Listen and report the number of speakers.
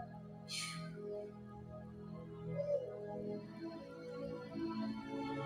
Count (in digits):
0